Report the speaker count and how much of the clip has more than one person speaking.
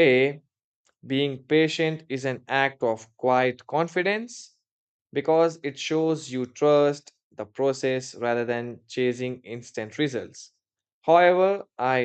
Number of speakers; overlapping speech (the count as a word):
one, no overlap